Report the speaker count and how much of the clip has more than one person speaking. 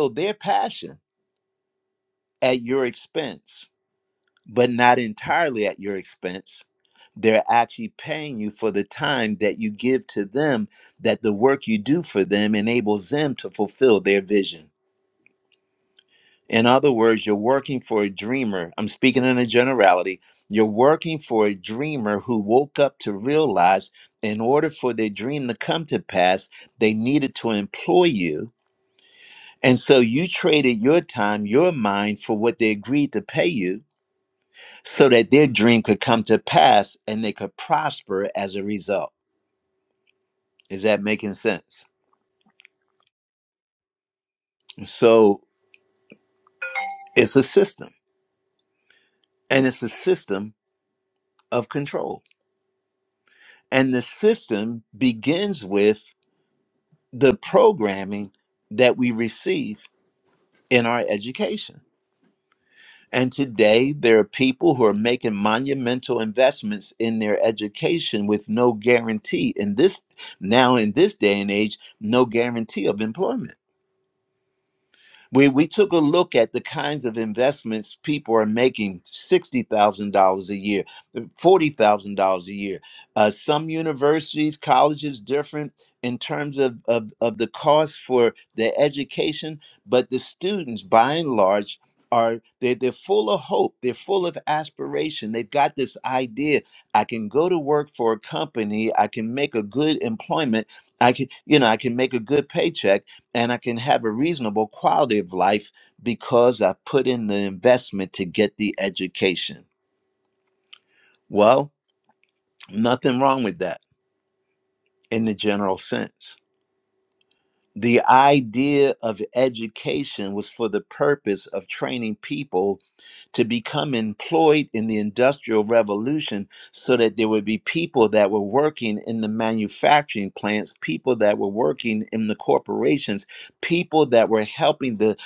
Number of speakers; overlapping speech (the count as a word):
one, no overlap